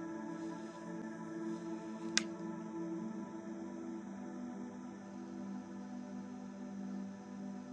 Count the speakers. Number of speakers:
0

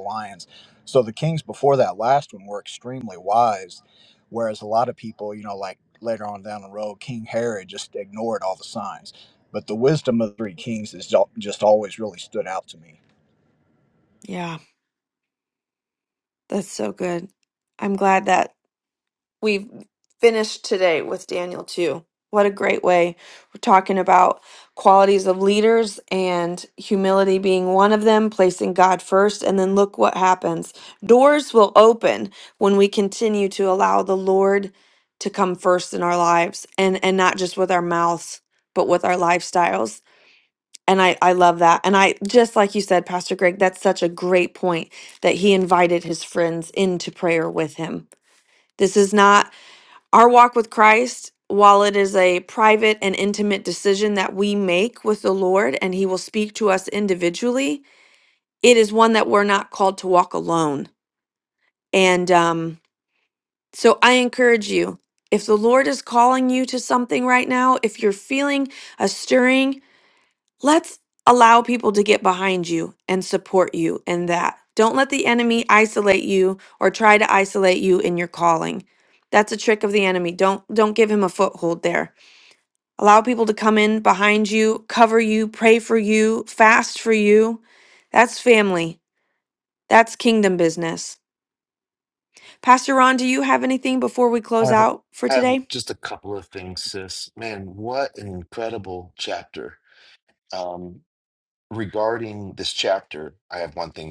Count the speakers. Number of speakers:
3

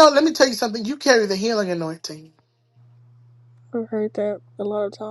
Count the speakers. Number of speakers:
2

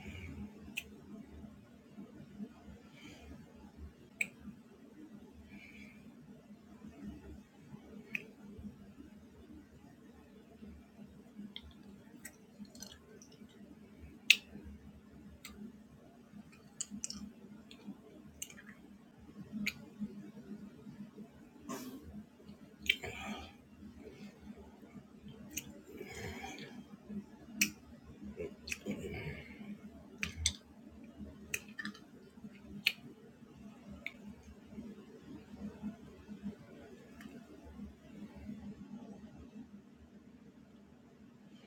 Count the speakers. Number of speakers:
0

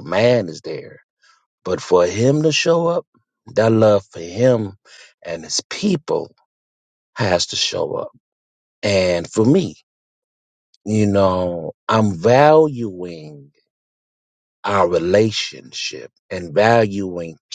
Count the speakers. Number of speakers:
1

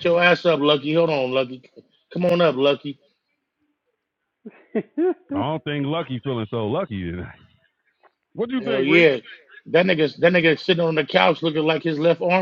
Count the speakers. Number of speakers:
2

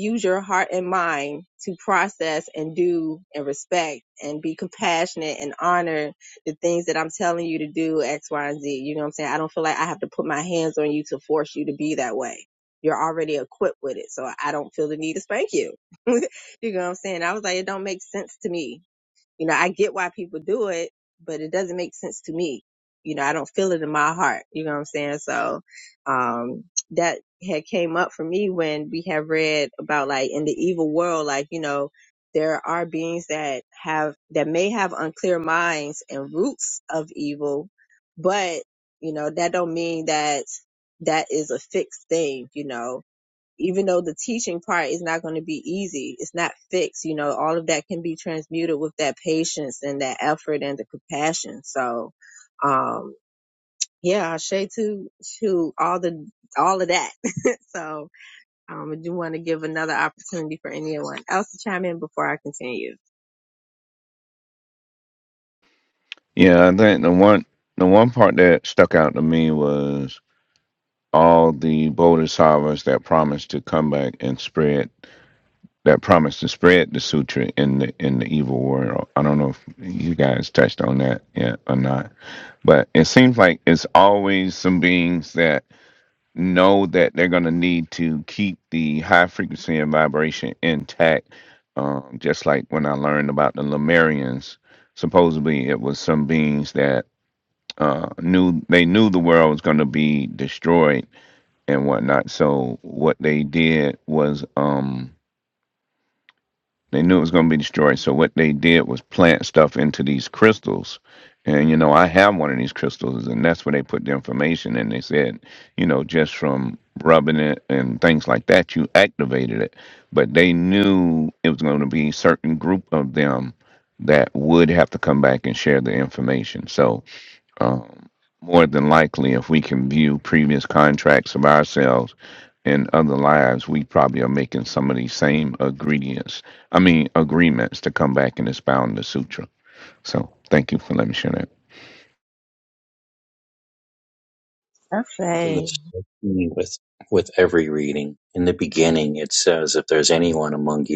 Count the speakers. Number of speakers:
3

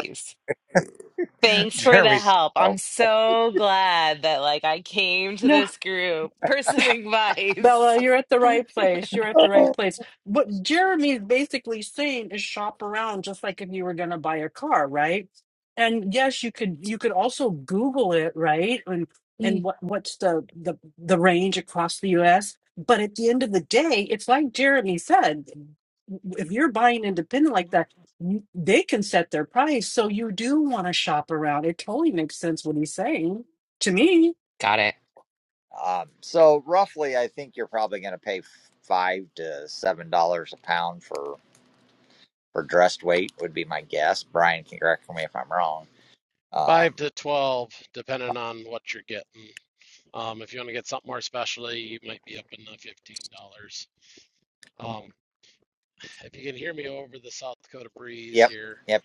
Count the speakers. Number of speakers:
4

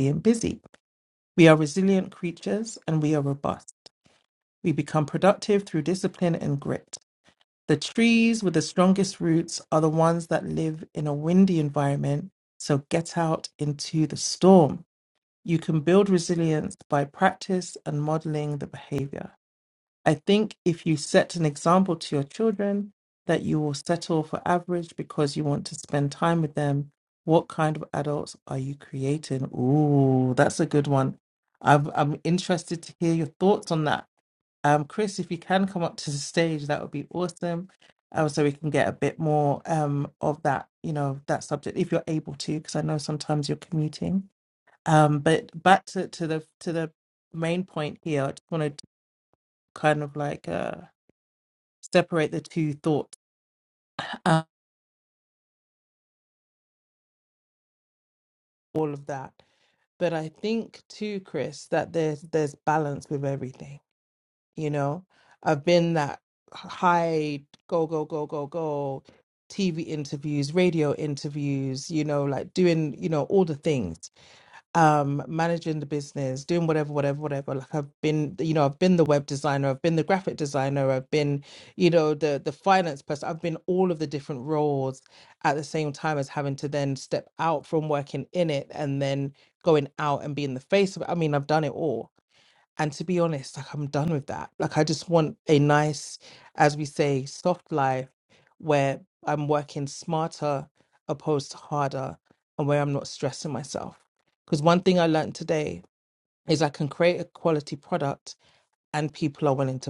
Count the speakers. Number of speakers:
1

